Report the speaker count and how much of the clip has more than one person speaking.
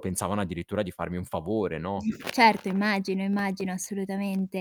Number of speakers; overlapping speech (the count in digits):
2, no overlap